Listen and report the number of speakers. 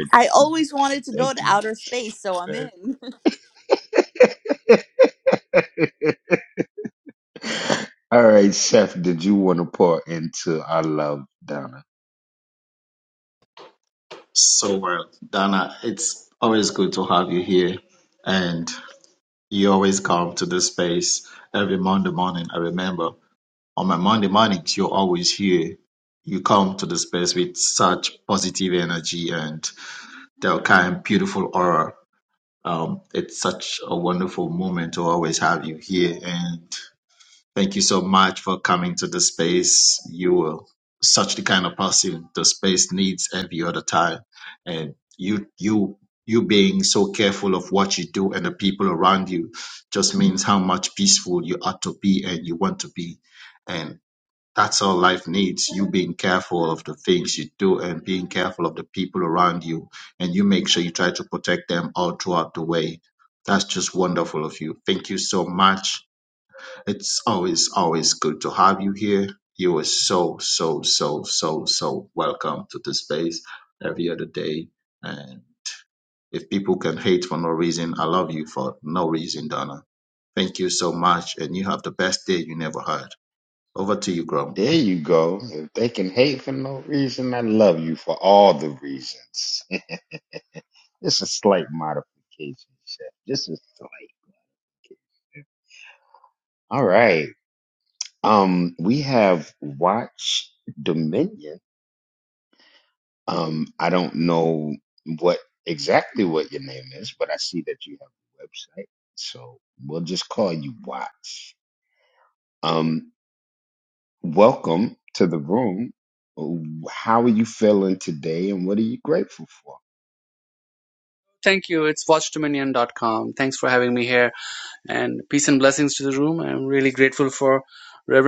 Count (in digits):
4